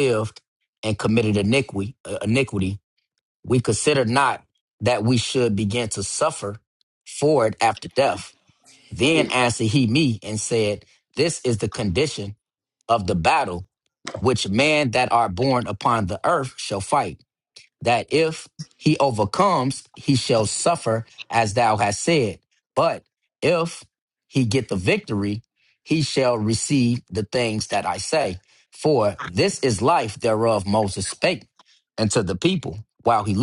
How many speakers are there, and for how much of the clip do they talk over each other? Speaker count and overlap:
one, no overlap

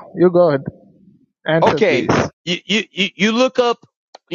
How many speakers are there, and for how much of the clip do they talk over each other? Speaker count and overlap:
two, about 11%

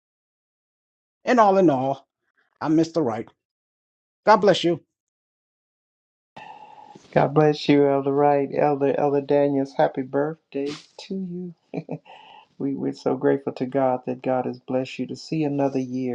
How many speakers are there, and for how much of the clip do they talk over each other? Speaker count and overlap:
two, no overlap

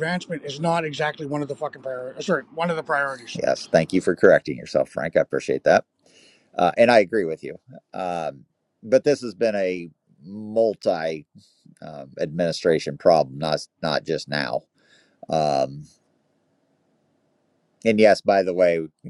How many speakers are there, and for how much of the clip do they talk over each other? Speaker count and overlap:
two, under 1%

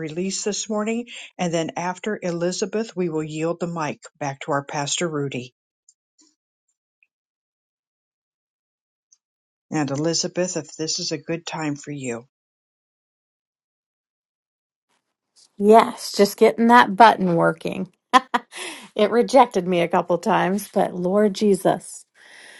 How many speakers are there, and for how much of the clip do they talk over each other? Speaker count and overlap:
two, no overlap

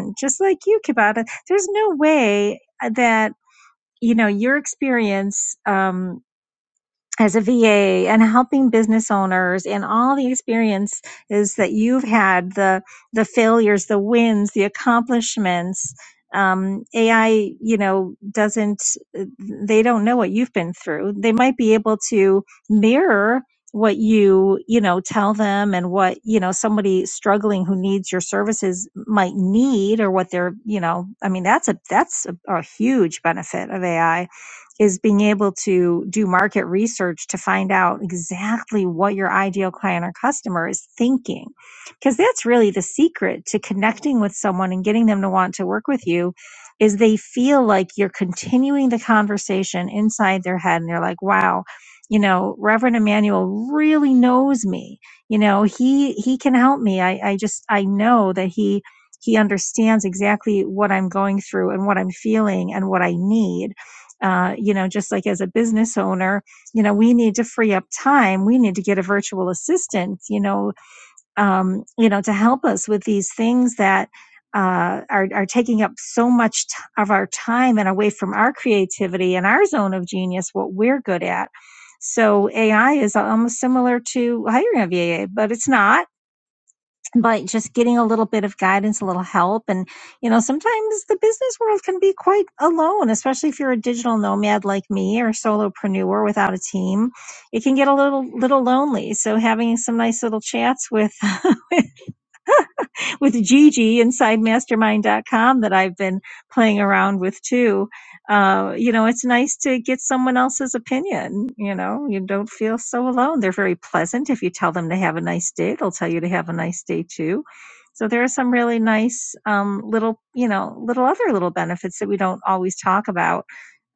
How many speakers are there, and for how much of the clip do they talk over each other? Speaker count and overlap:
one, no overlap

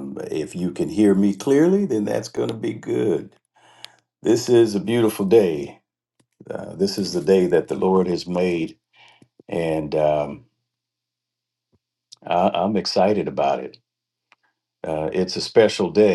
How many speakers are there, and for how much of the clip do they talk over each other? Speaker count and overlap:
one, no overlap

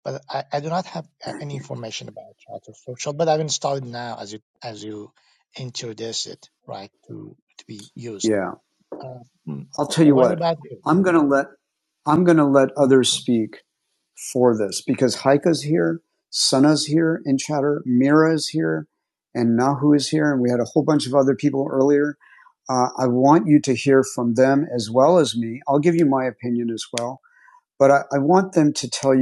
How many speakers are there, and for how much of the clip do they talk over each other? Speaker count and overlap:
two, about 4%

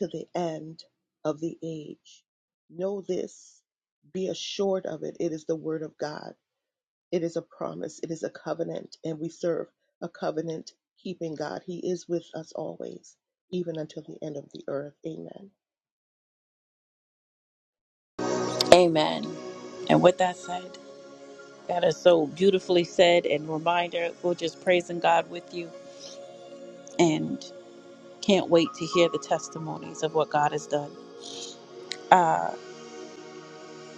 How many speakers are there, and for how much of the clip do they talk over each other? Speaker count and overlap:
two, no overlap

